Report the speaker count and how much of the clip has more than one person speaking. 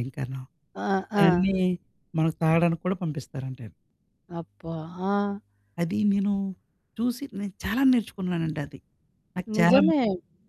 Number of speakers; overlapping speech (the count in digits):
2, about 6%